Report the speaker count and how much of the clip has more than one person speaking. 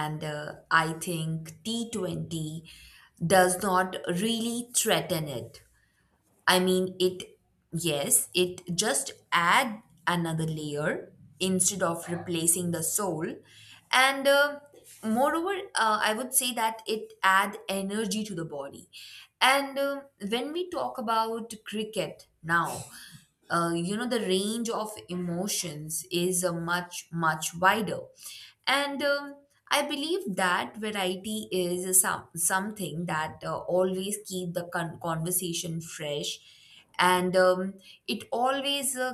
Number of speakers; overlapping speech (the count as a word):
one, no overlap